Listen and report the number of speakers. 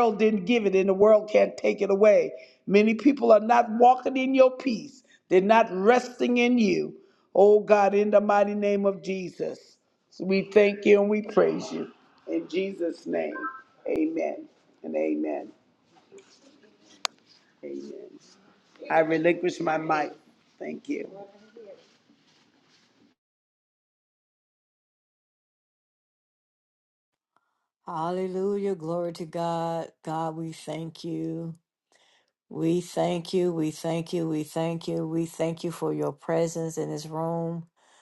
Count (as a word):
two